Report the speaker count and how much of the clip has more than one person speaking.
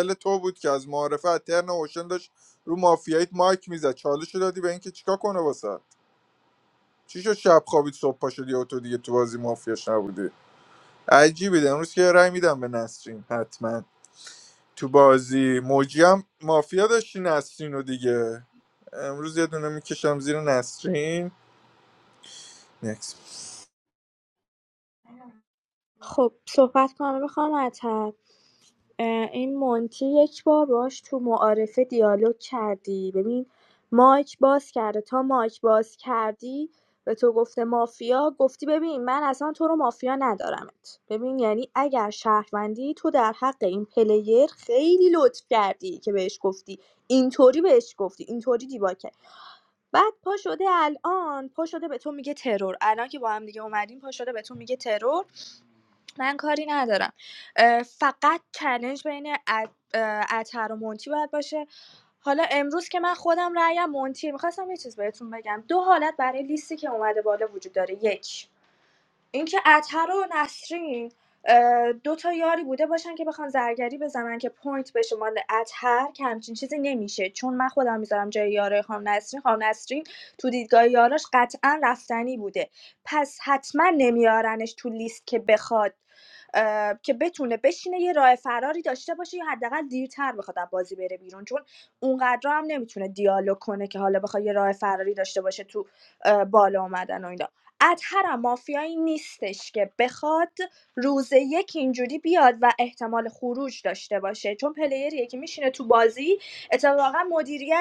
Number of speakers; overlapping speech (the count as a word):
two, no overlap